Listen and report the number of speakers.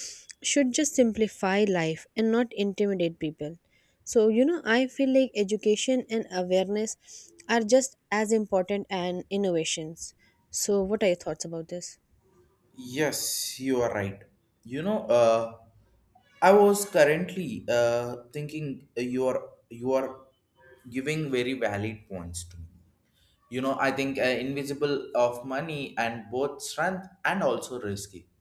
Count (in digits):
2